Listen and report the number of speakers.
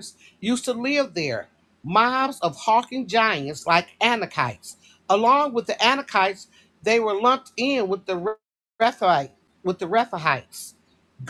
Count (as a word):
one